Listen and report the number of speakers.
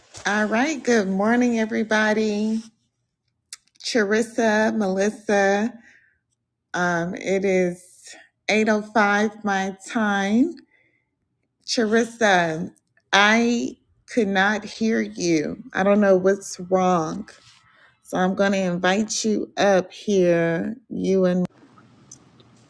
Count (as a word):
one